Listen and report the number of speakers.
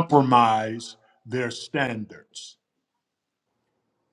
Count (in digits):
1